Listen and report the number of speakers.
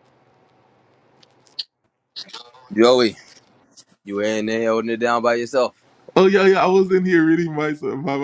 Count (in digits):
2